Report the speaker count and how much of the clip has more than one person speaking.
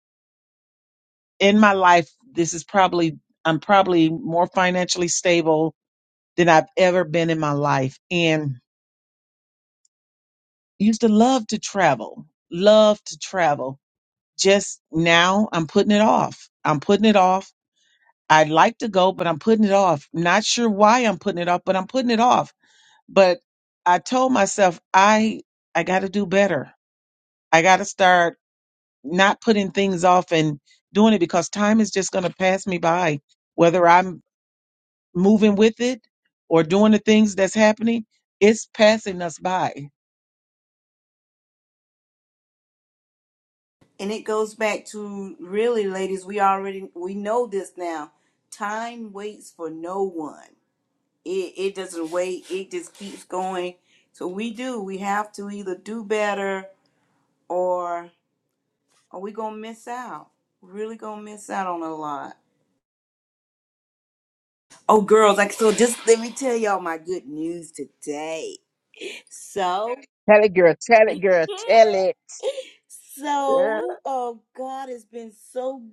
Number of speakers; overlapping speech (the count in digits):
3, about 1%